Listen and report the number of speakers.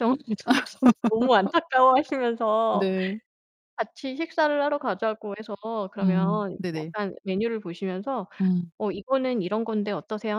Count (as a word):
two